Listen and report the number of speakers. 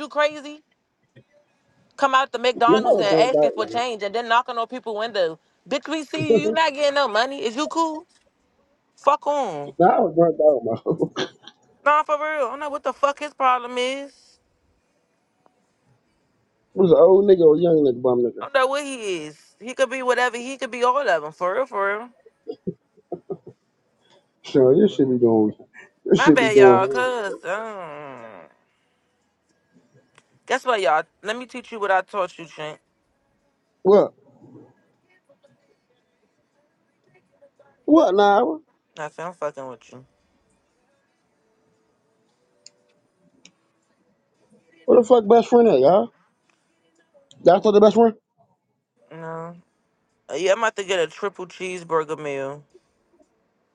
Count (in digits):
2